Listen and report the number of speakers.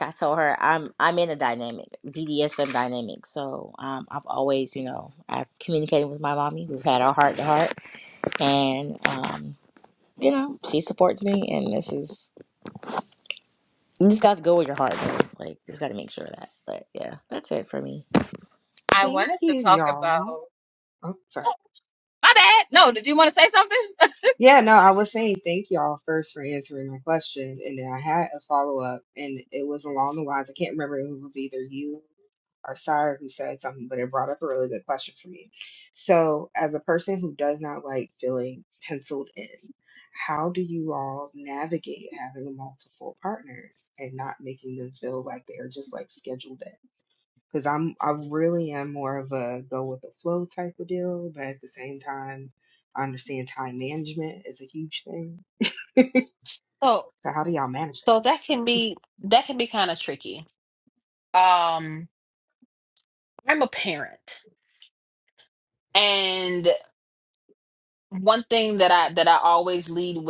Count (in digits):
4